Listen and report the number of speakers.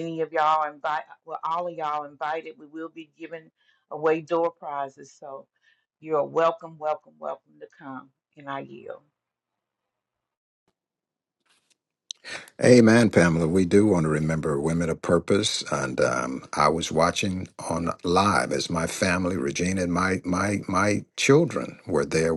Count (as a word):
two